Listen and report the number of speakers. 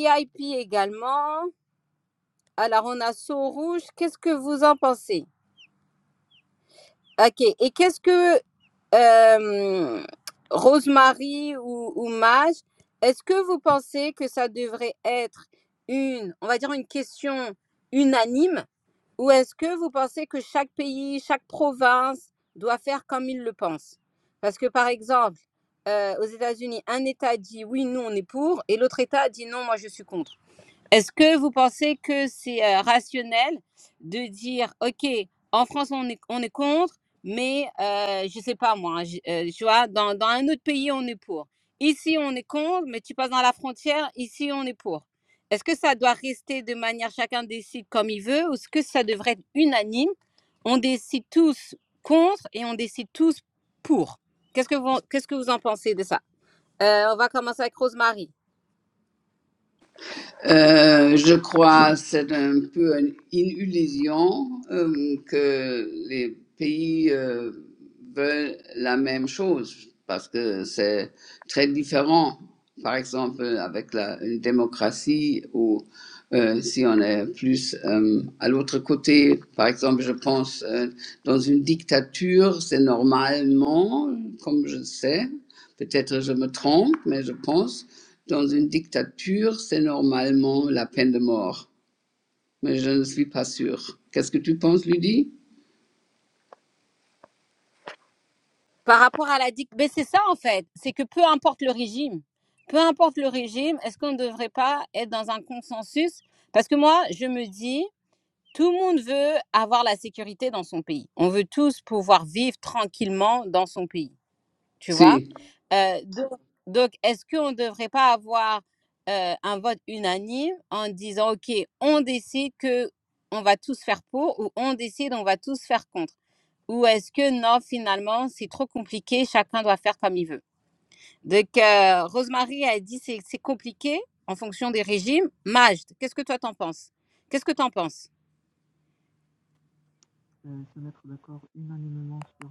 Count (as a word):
three